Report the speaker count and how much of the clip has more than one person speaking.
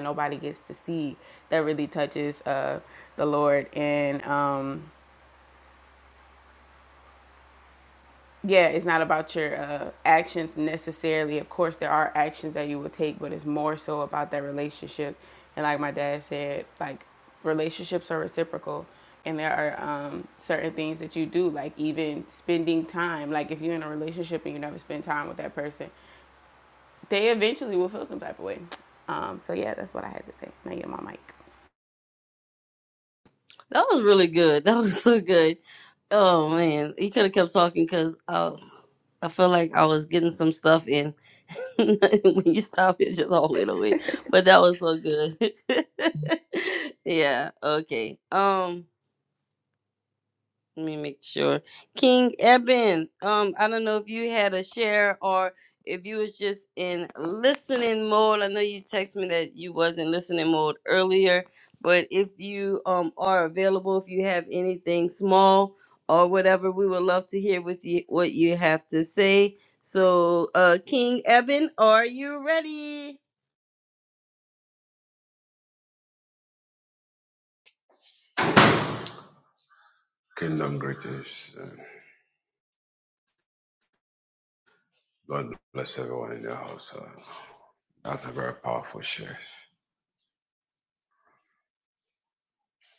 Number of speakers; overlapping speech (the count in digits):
3, no overlap